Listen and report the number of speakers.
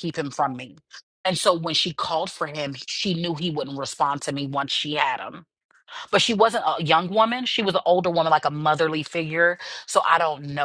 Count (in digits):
1